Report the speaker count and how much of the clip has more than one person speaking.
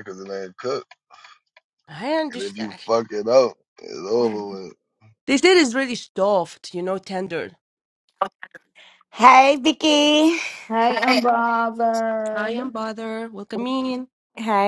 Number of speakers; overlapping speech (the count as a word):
four, about 4%